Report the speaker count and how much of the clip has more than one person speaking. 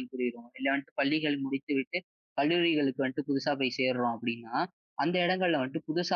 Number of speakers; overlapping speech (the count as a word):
one, no overlap